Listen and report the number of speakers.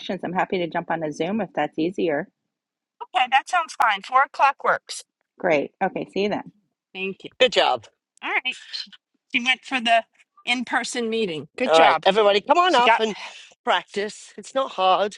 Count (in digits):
3